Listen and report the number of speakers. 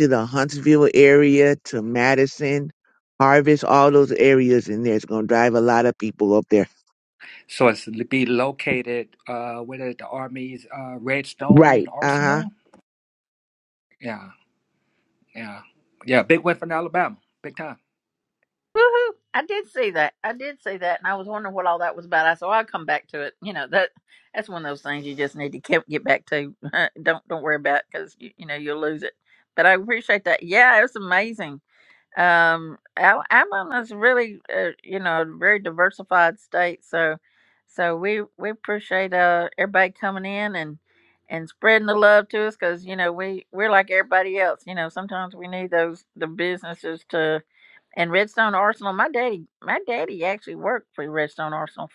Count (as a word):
three